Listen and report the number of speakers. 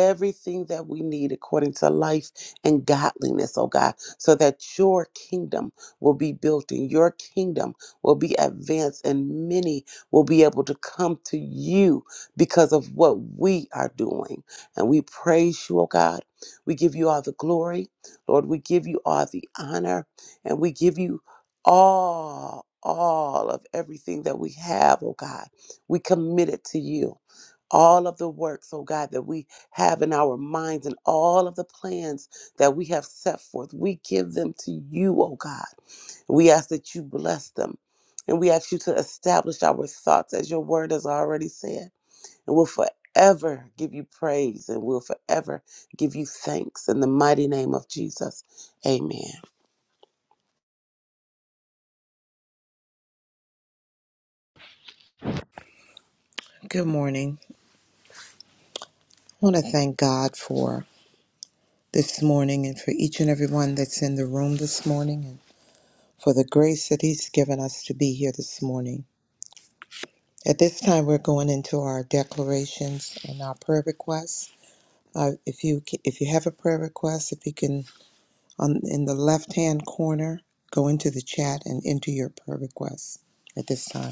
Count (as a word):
two